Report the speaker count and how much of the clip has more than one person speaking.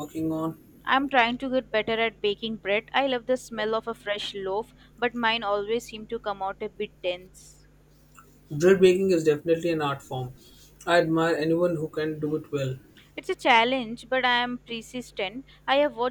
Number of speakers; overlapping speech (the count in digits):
2, no overlap